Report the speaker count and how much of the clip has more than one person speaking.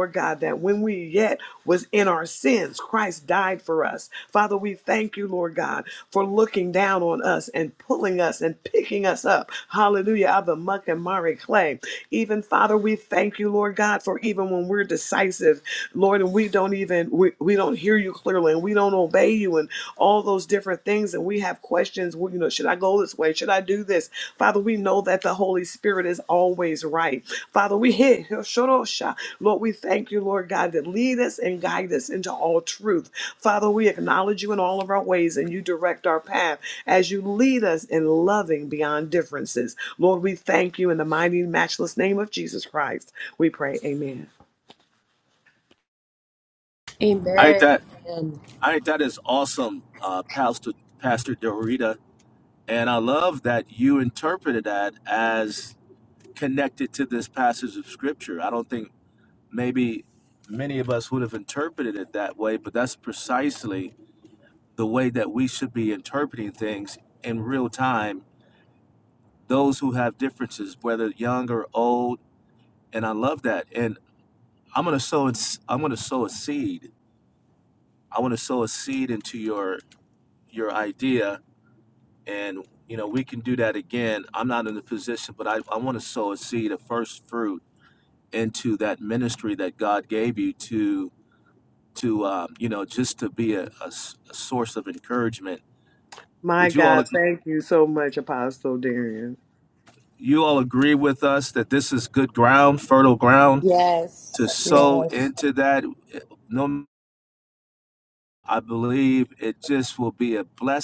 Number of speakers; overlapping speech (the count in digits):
3, about 1%